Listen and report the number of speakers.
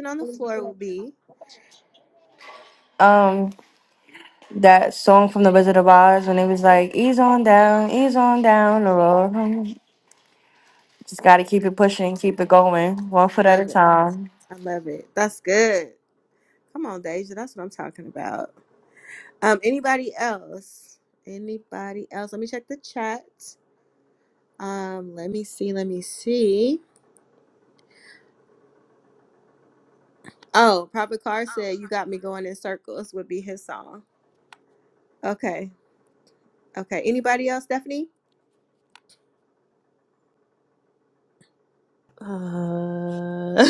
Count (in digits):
3